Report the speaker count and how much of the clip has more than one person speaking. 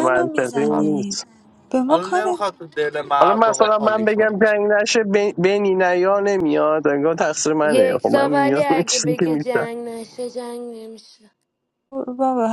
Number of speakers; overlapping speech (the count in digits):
4, about 38%